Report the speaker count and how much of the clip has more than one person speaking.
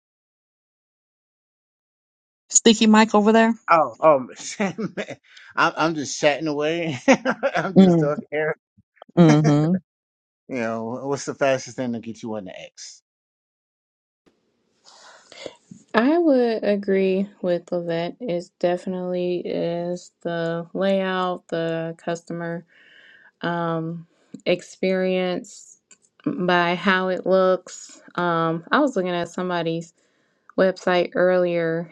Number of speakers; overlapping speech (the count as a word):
three, about 1%